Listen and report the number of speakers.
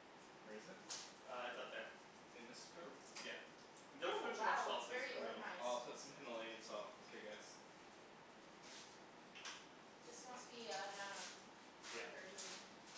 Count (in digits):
3